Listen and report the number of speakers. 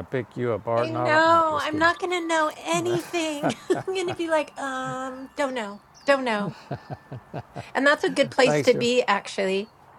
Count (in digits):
2